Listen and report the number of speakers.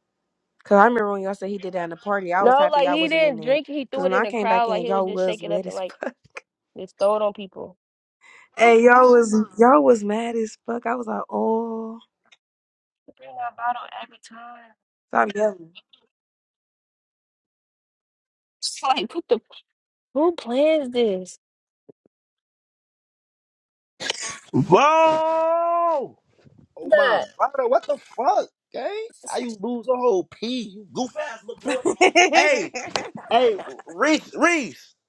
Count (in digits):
3